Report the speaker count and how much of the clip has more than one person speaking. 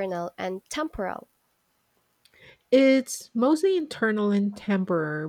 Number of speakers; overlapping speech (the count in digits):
2, no overlap